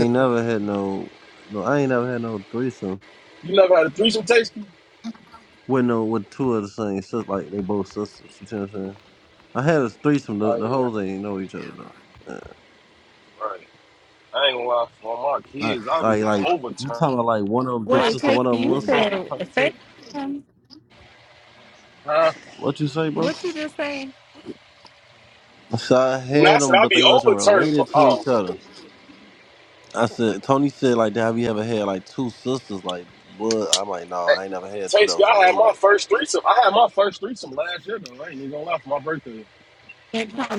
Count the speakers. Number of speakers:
three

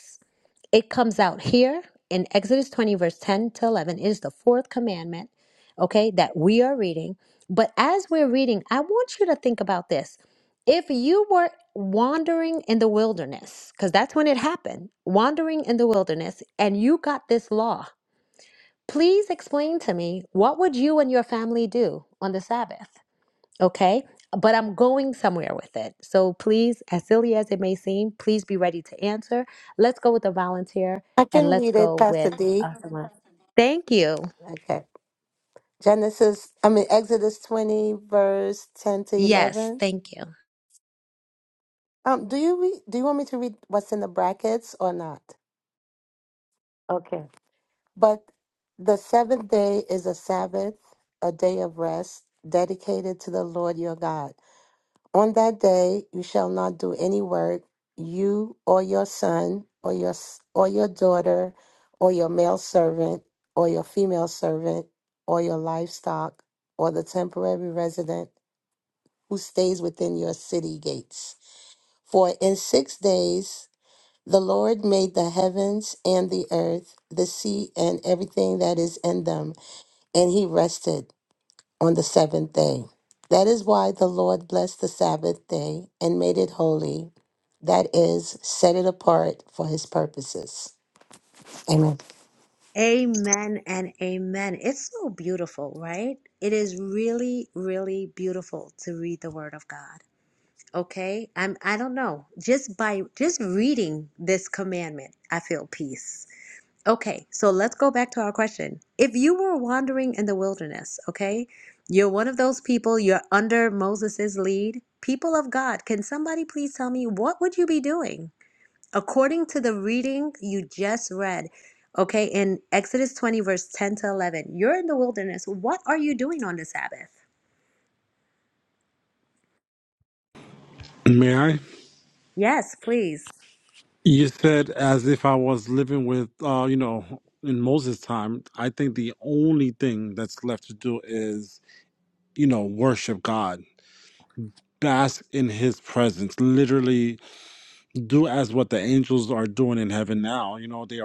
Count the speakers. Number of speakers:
three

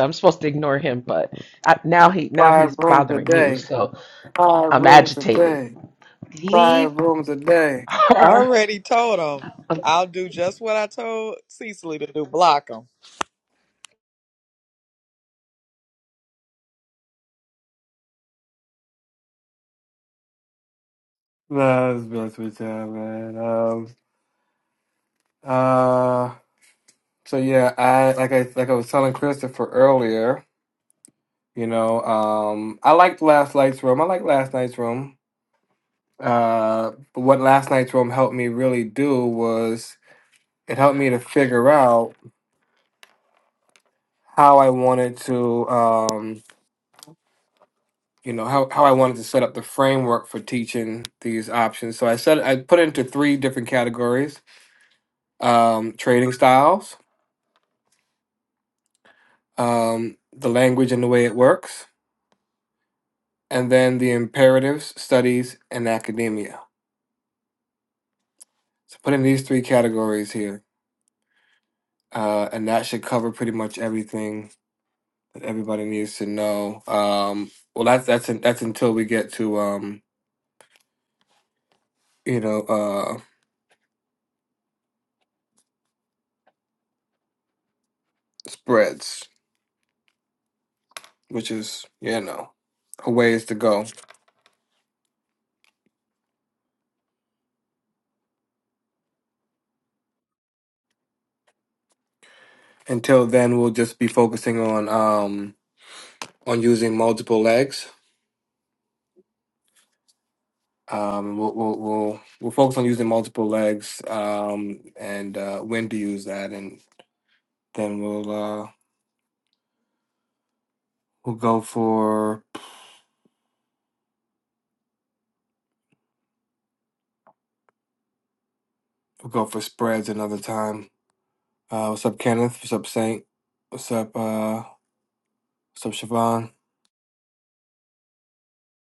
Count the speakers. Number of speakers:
three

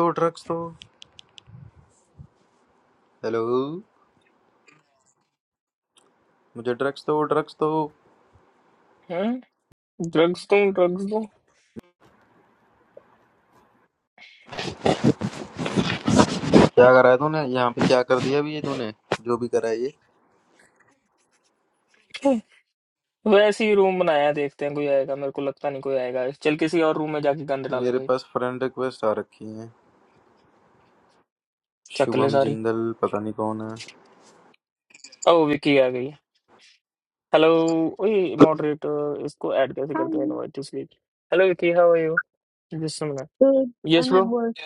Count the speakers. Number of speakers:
three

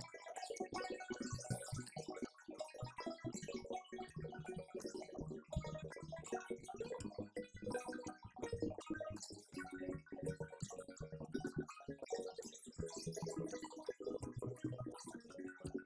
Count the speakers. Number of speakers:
zero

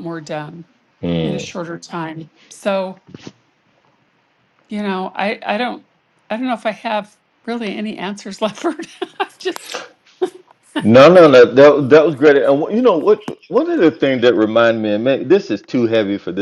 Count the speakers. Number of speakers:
two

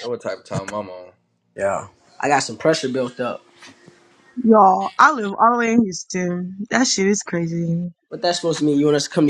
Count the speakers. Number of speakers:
three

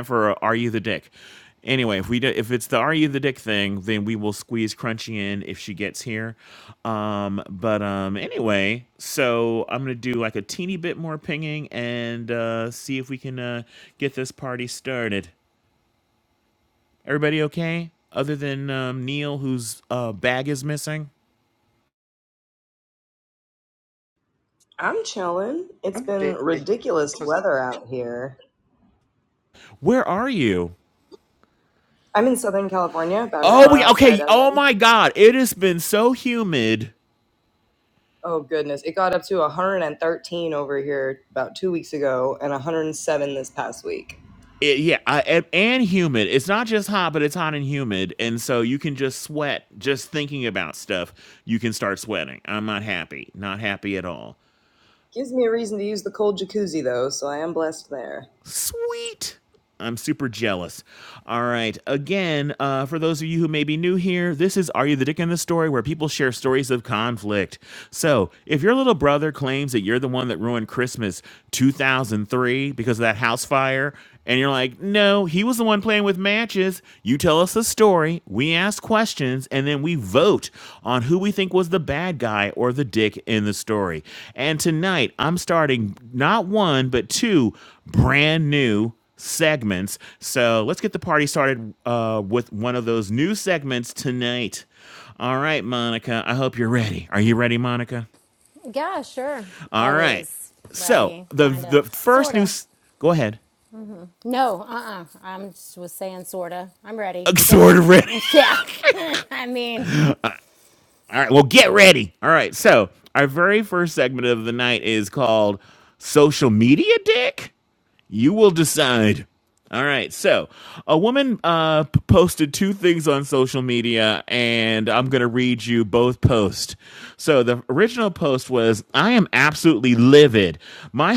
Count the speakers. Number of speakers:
three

